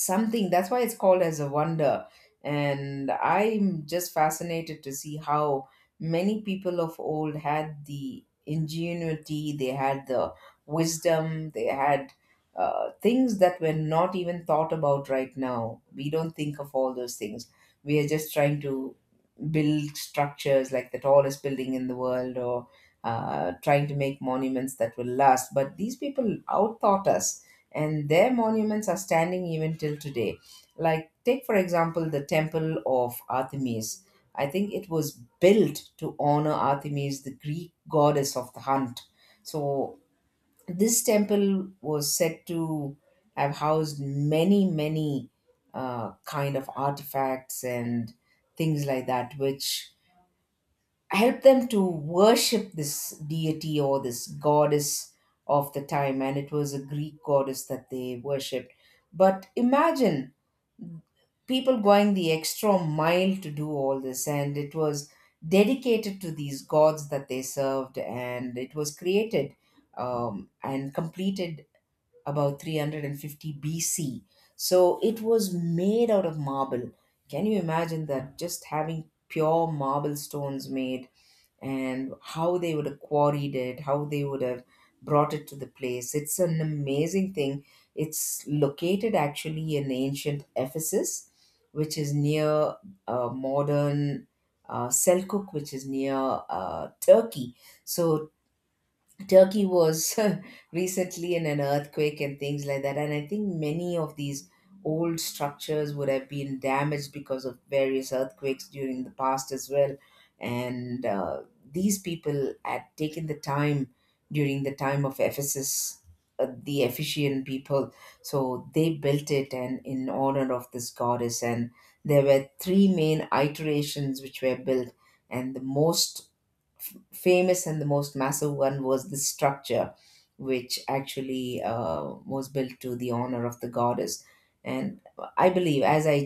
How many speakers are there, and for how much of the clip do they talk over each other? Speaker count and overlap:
one, no overlap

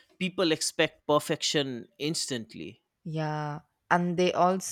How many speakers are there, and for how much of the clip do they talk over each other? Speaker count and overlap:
two, no overlap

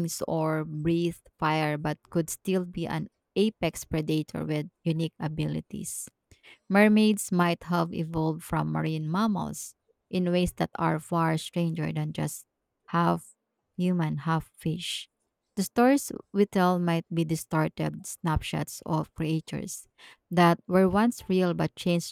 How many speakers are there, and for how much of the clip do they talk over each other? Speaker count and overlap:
one, no overlap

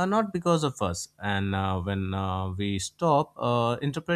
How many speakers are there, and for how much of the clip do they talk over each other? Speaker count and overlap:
one, no overlap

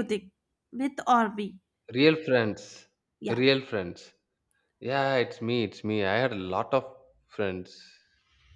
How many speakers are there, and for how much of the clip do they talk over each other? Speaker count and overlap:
two, about 1%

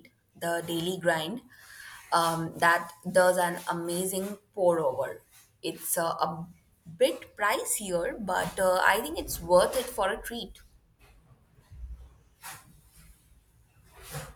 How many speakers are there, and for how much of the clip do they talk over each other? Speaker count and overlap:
one, no overlap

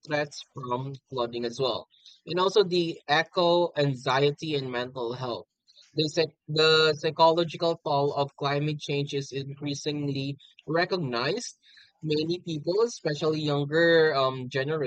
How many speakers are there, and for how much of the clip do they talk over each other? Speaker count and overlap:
one, no overlap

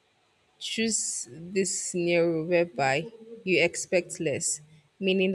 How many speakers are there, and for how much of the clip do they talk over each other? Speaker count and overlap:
one, no overlap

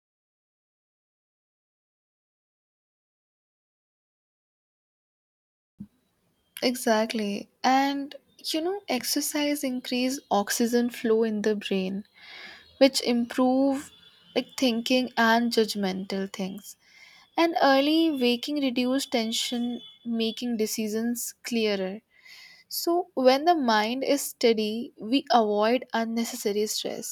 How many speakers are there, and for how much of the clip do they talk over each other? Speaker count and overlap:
one, no overlap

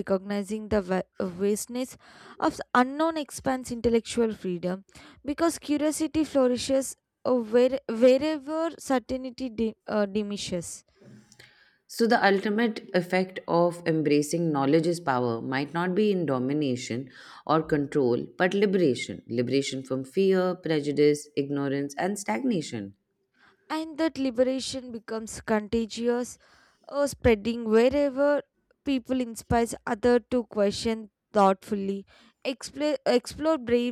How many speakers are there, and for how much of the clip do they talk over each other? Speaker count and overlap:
two, no overlap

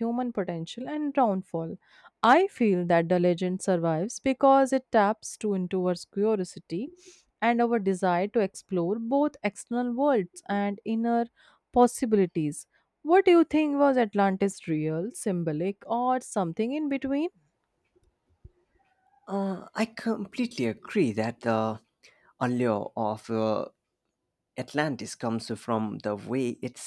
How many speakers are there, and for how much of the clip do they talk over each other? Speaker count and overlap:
two, no overlap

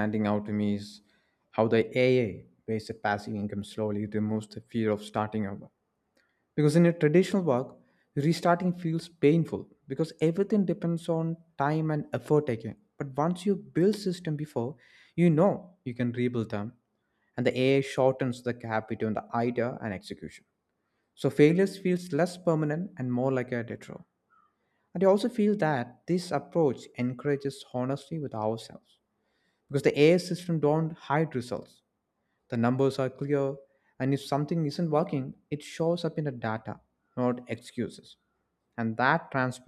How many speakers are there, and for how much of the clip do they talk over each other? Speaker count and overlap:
one, no overlap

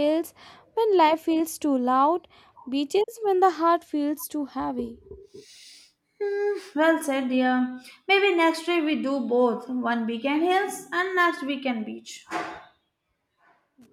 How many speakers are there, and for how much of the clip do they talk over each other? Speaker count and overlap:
two, no overlap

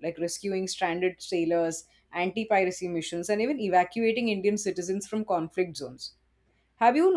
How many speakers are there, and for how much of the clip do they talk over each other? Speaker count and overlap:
one, no overlap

